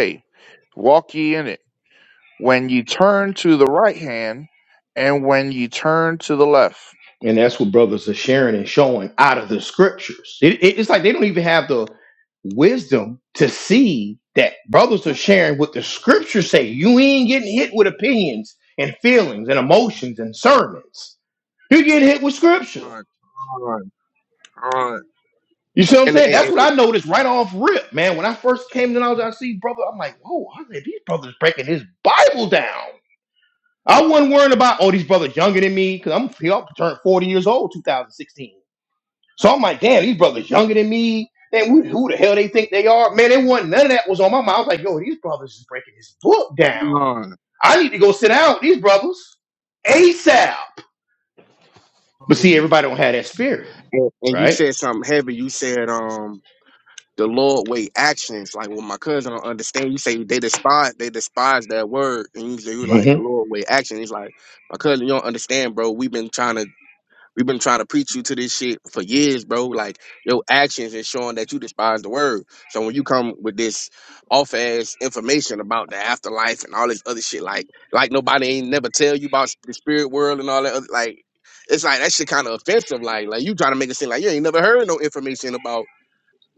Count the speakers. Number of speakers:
3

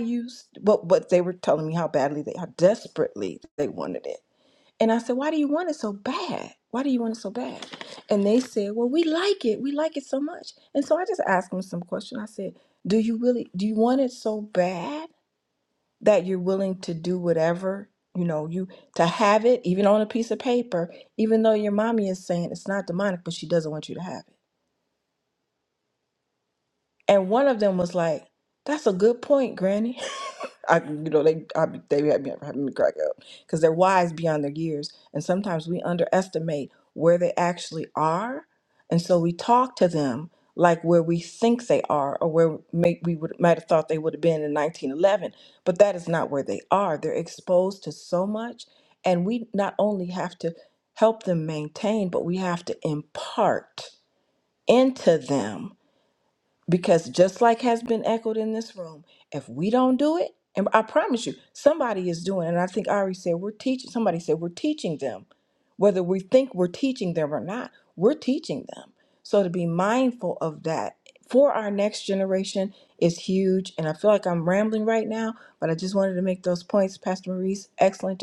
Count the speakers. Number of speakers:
1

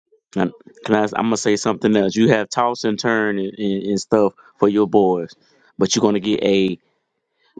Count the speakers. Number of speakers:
1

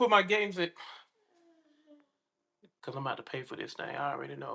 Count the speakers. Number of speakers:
1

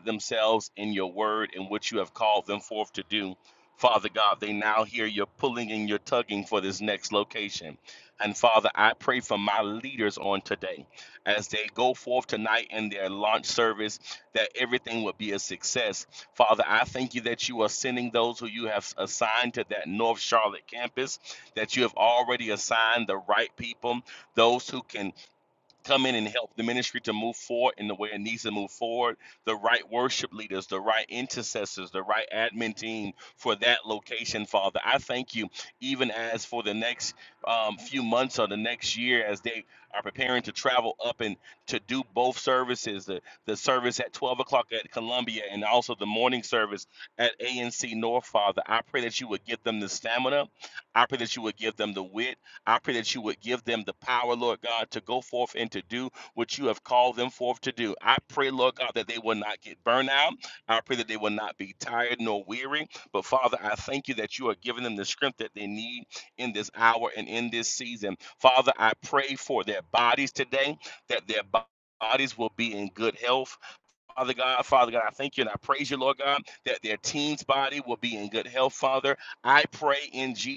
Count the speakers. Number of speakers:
1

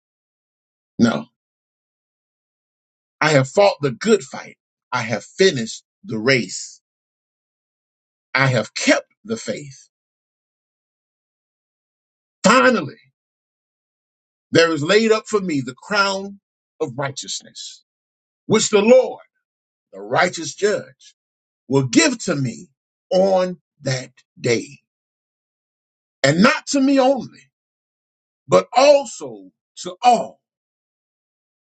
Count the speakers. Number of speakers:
1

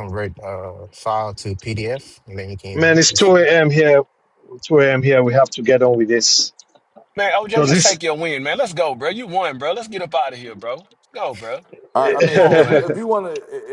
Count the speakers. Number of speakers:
4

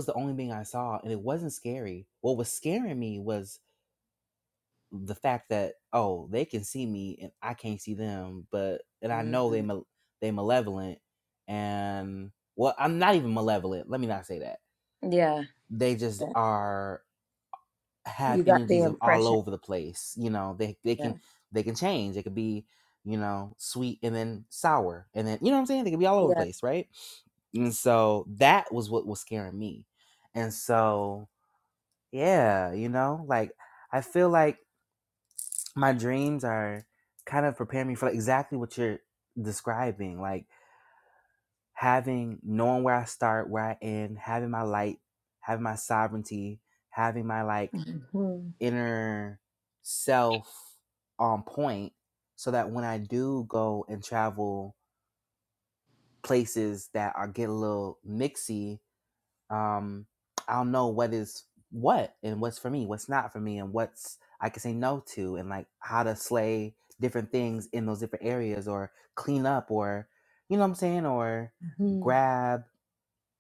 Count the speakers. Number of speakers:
2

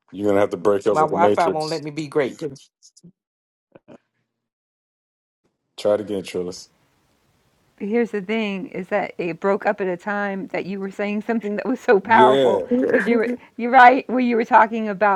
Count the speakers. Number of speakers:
3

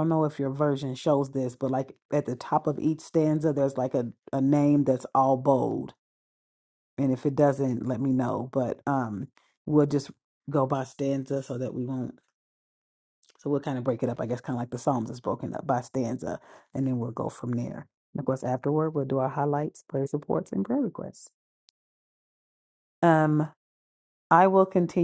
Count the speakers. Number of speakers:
1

